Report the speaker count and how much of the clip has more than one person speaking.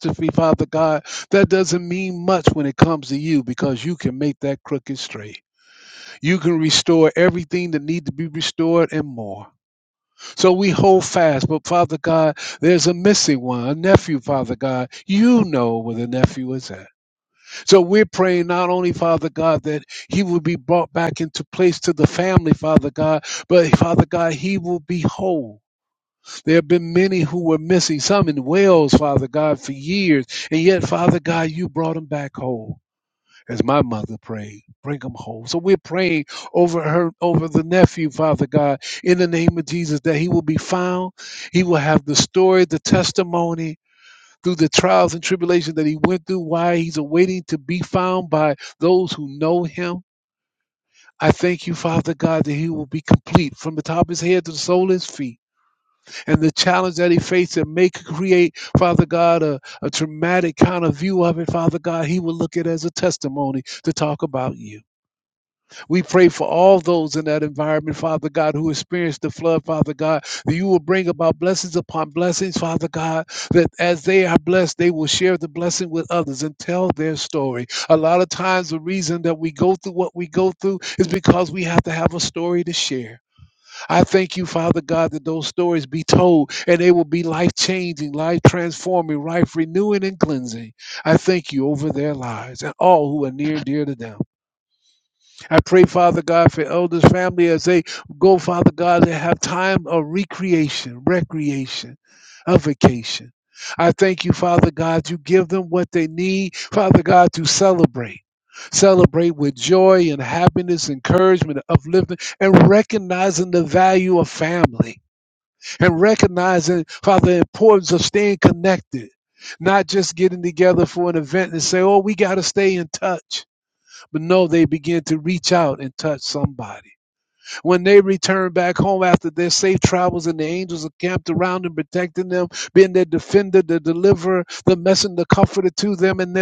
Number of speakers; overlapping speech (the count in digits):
1, no overlap